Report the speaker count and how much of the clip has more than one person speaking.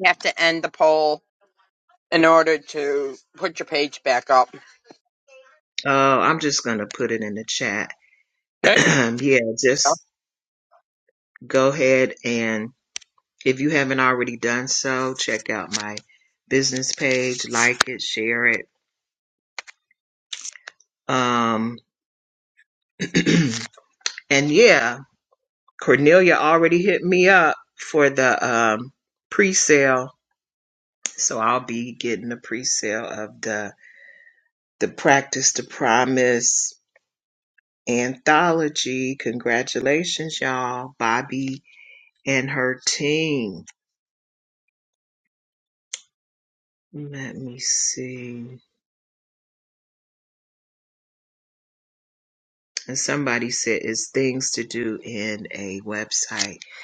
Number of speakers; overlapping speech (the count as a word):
two, under 1%